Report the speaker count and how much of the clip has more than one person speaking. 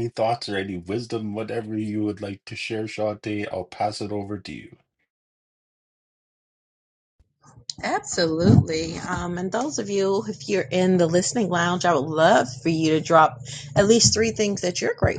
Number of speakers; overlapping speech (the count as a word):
two, no overlap